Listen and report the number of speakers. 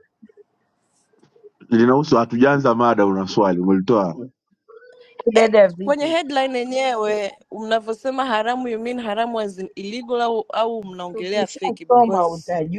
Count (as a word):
three